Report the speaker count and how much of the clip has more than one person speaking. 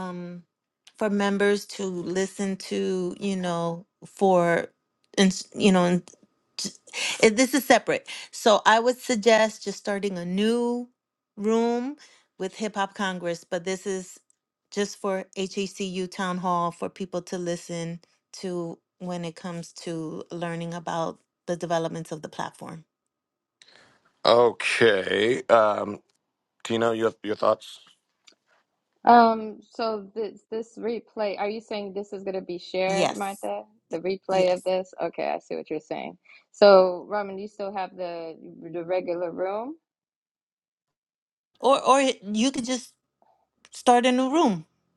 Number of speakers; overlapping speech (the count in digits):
3, about 1%